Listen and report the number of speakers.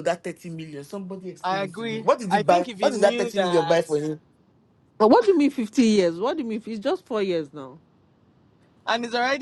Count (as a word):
three